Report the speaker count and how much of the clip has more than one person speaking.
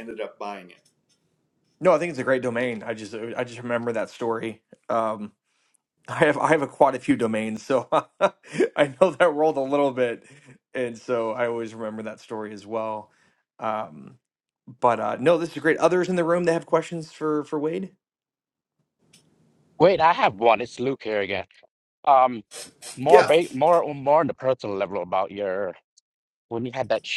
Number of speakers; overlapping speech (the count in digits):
3, about 1%